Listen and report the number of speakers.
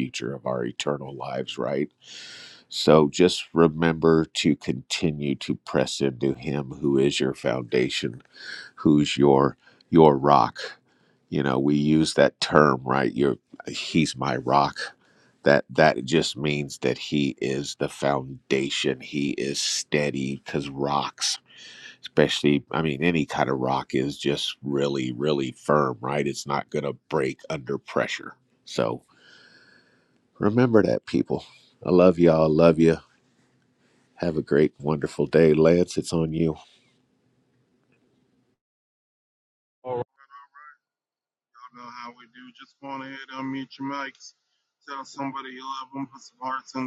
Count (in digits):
2